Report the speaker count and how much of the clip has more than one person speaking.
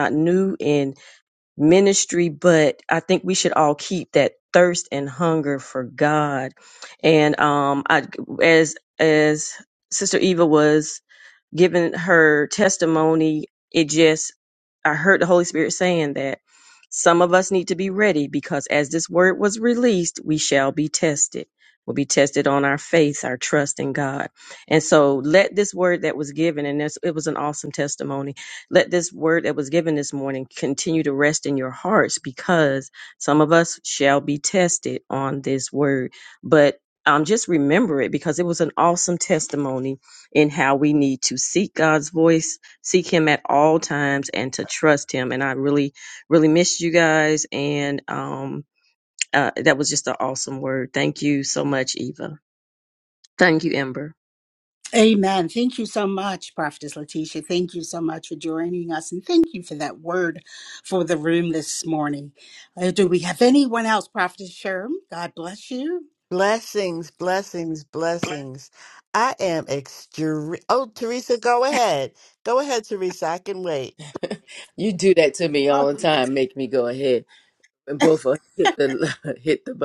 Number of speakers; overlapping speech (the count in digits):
4, under 1%